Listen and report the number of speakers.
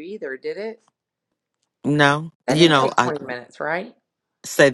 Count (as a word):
two